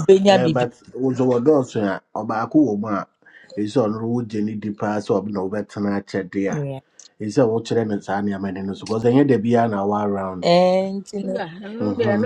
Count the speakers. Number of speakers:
3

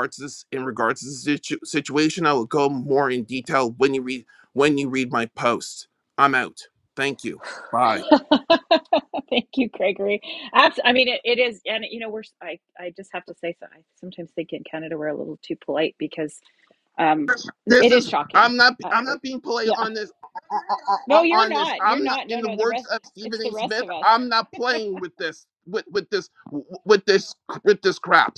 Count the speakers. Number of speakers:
2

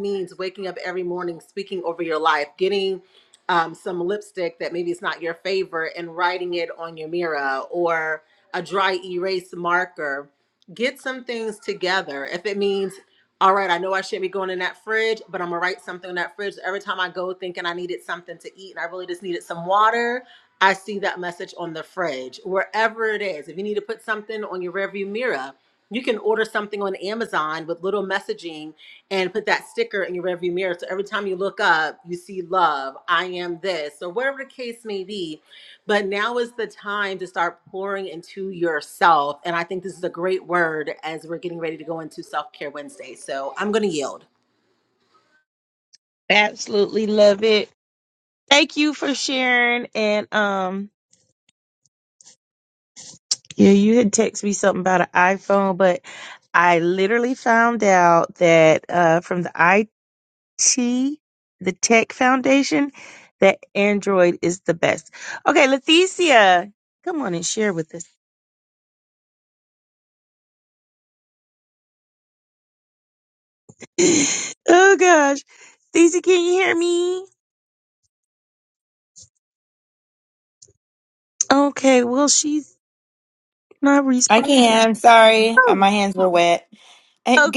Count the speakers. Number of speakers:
3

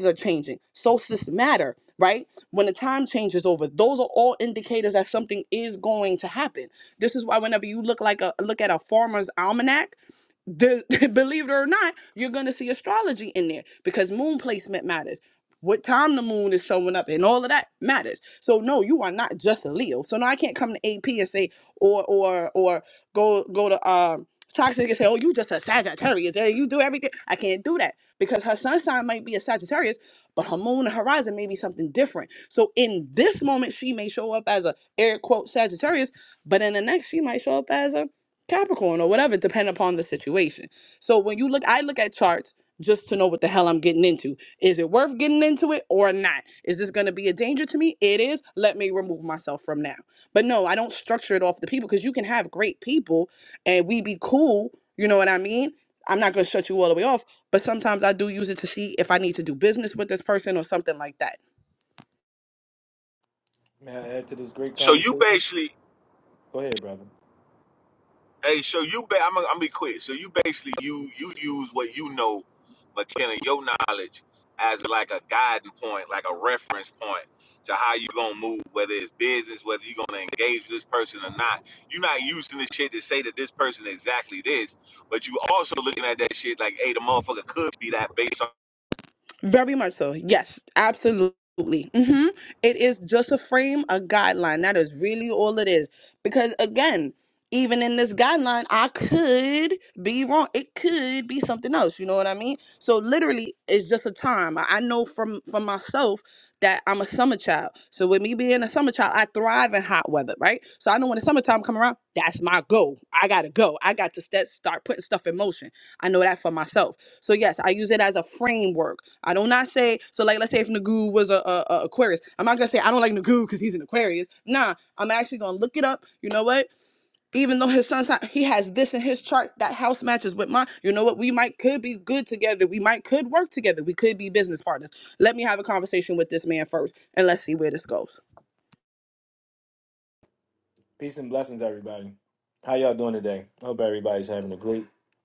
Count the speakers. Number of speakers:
3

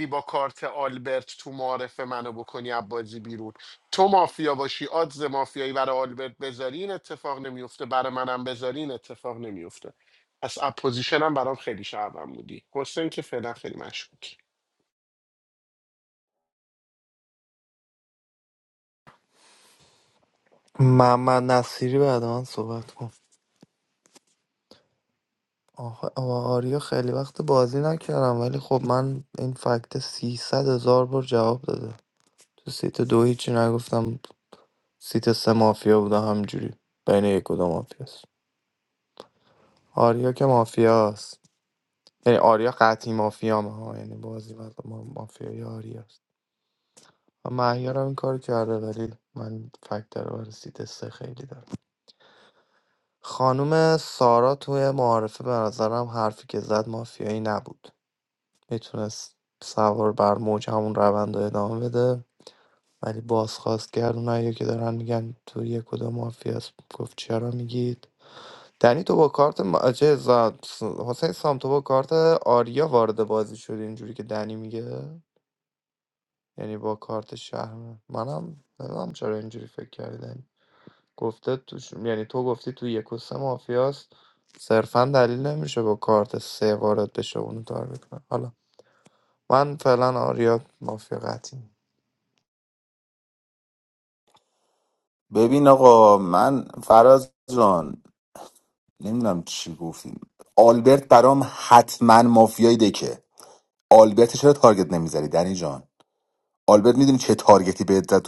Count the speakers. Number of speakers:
3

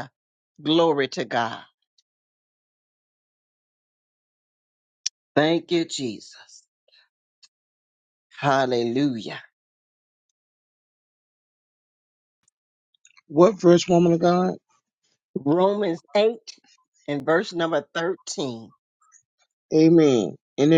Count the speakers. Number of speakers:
2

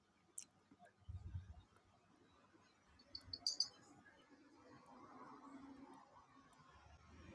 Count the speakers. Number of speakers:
0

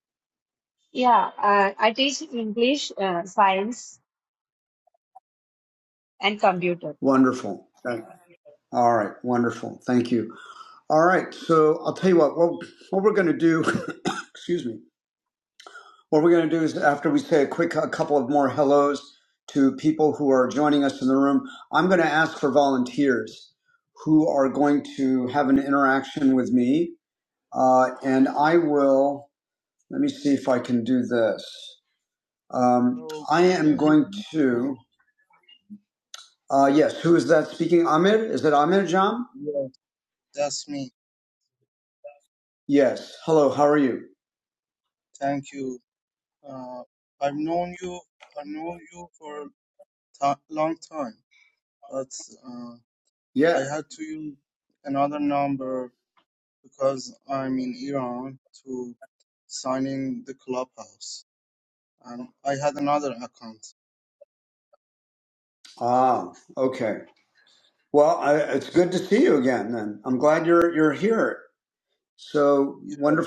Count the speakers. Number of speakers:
3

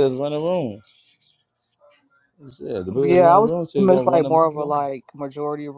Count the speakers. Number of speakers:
2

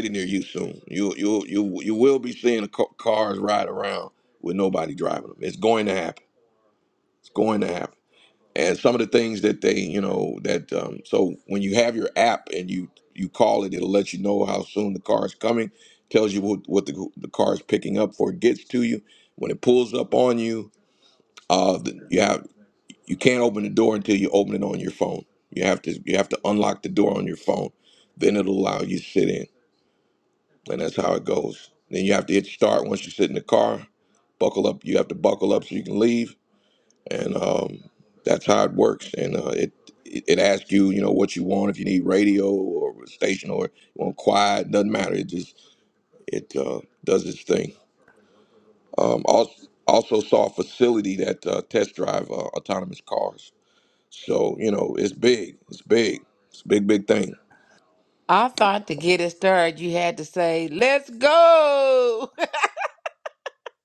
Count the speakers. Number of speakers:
2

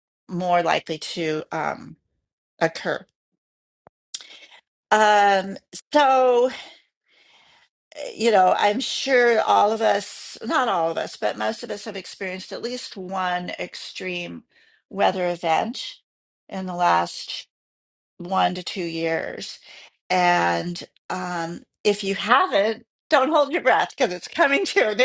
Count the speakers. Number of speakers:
1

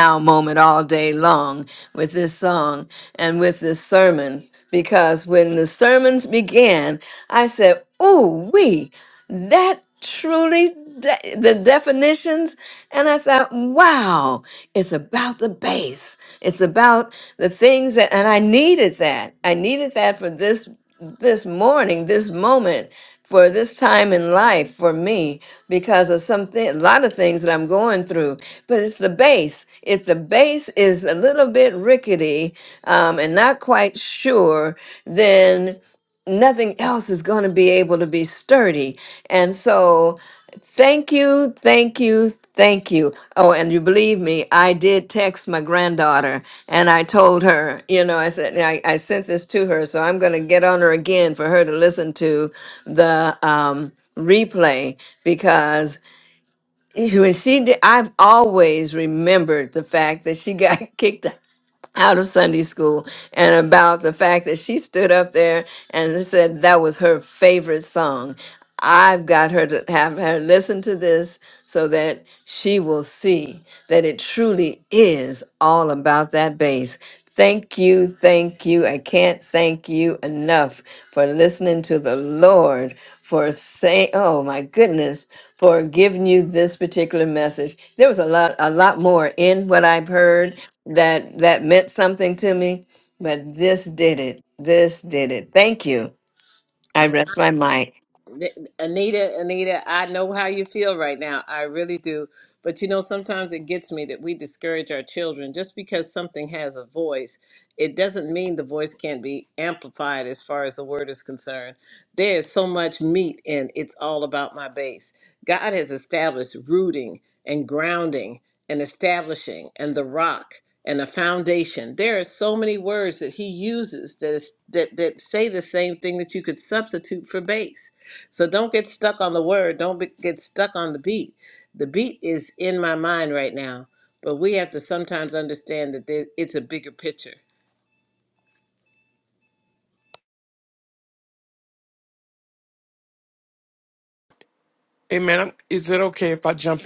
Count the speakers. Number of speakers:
3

